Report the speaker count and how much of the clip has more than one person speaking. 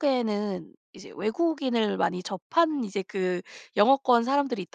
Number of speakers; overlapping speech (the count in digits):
1, no overlap